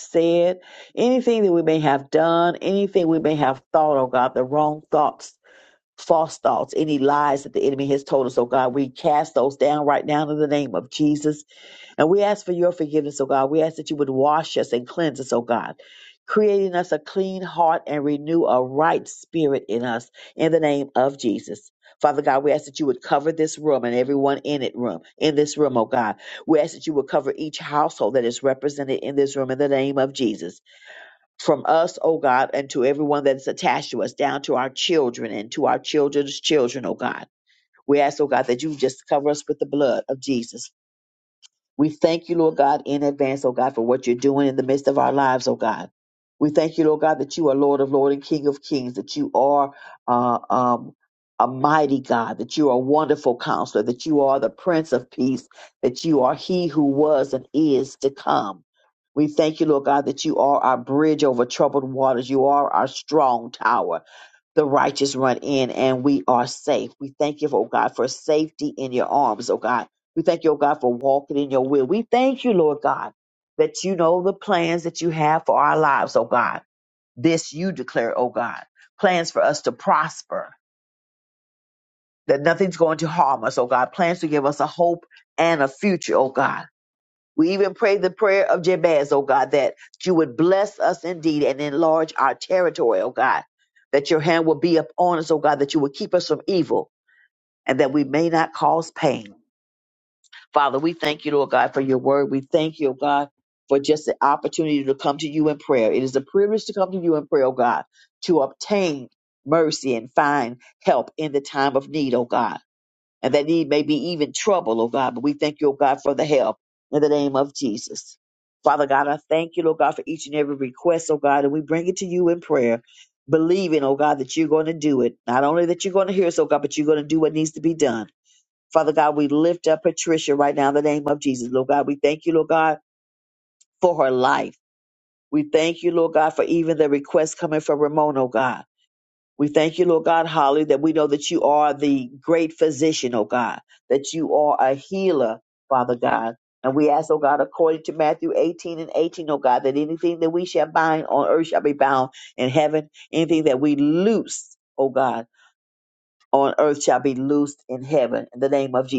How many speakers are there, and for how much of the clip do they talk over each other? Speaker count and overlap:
one, no overlap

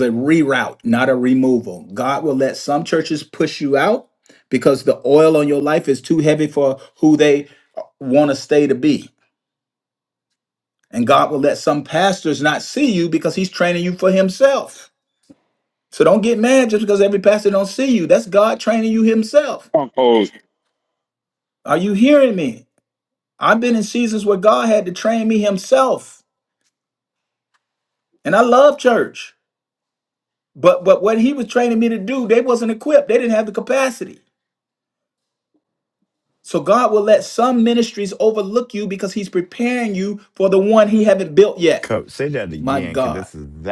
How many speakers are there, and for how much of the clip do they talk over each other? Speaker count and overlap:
two, about 2%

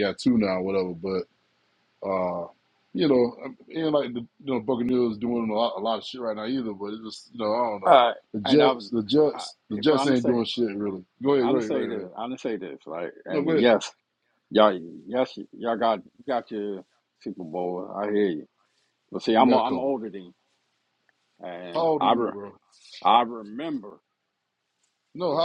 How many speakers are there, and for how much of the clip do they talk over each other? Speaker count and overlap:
two, about 15%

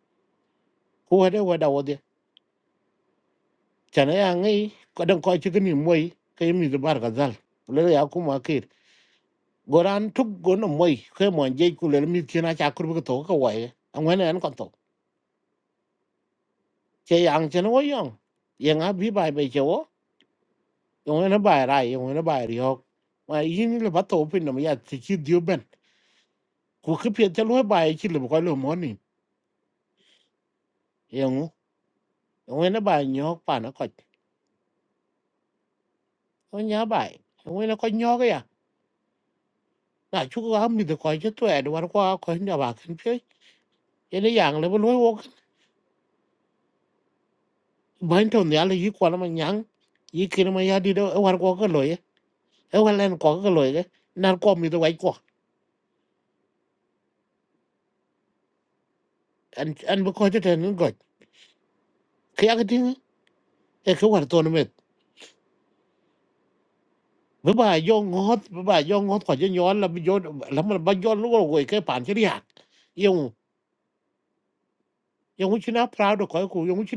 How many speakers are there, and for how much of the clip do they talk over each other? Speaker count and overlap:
one, no overlap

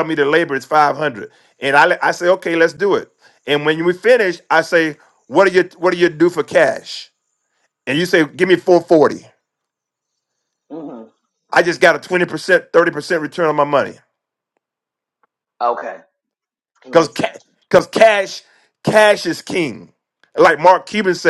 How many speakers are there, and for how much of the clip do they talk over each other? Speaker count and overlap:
two, about 1%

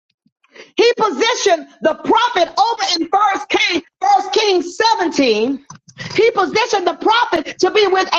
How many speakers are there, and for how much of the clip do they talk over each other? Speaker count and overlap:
one, no overlap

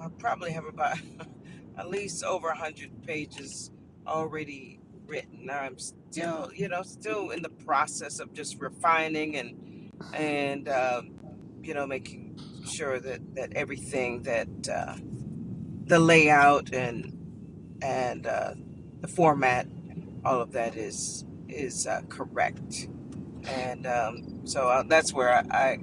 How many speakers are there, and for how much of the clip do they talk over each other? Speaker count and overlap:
one, no overlap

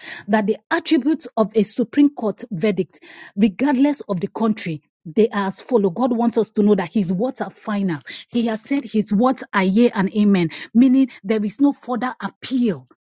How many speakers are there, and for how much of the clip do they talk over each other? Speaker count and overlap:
one, no overlap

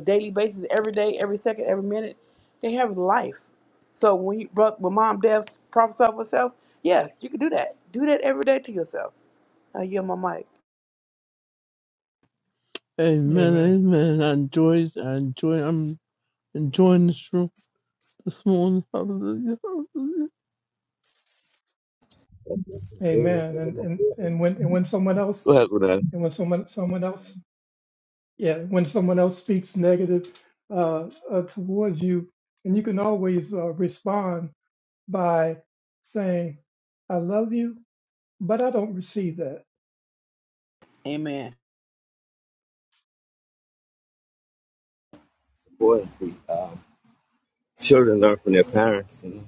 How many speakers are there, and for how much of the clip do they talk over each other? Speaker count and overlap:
four, about 1%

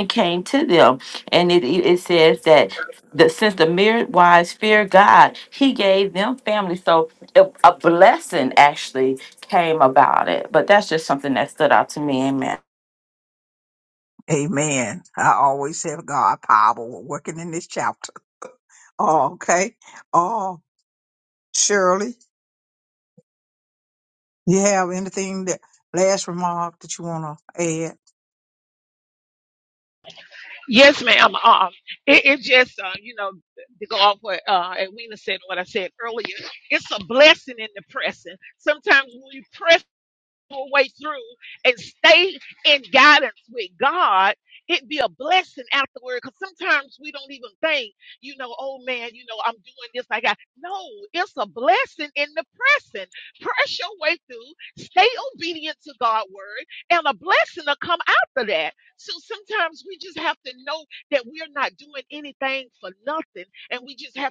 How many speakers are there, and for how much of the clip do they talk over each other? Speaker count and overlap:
three, no overlap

